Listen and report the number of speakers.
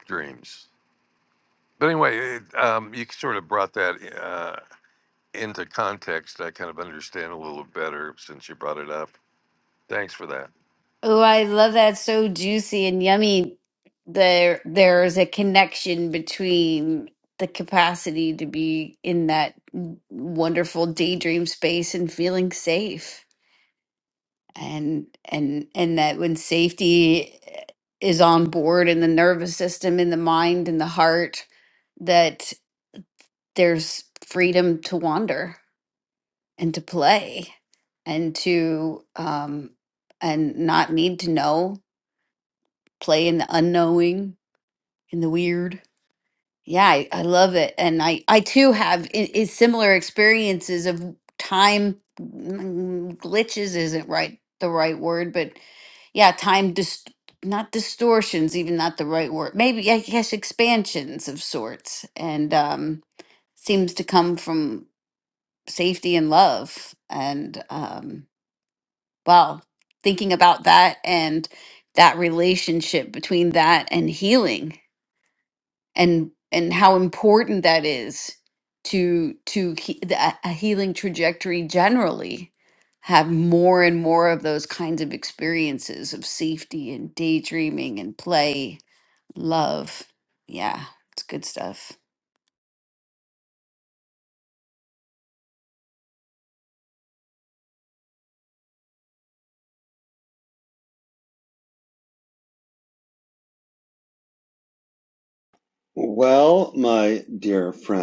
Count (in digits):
3